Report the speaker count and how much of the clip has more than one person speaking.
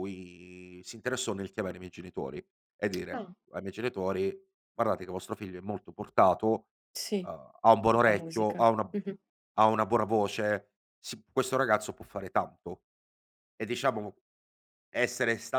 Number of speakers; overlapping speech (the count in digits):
2, about 5%